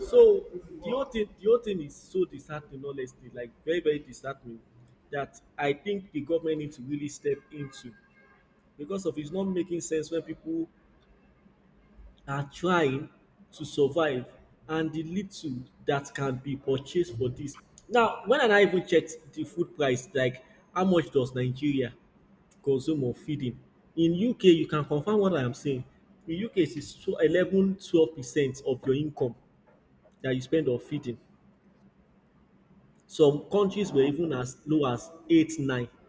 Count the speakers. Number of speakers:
one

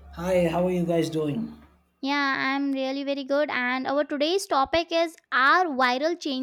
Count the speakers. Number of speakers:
two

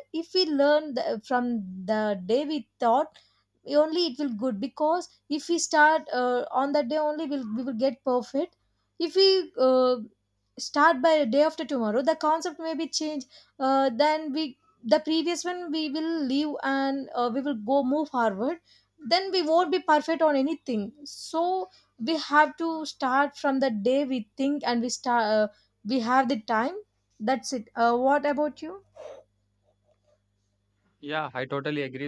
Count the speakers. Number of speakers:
two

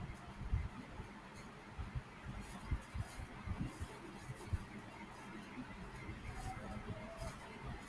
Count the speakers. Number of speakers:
zero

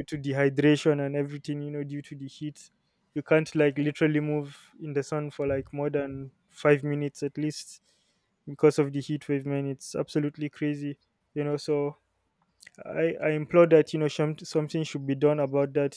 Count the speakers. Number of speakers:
one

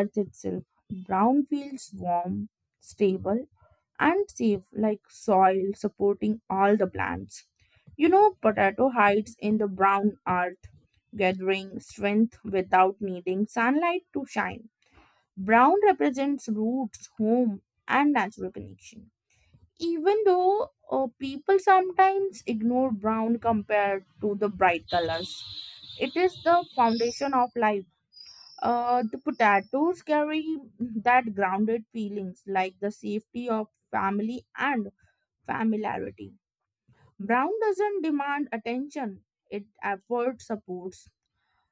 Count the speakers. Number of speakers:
one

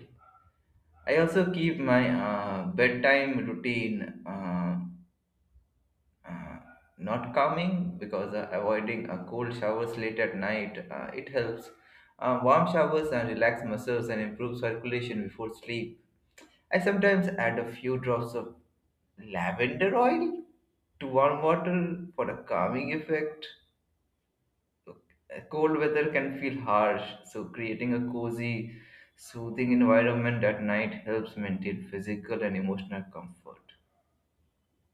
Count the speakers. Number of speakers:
one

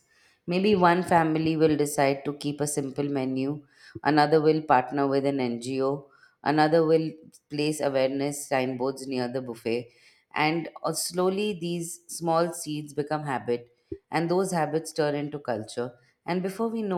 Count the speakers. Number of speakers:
one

